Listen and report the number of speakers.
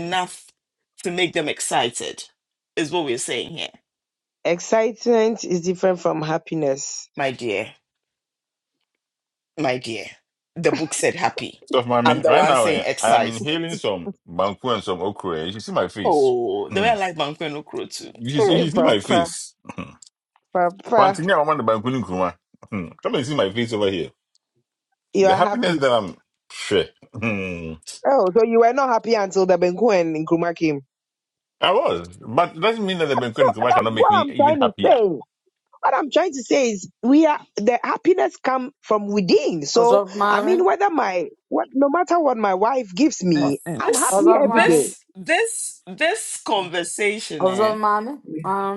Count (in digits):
4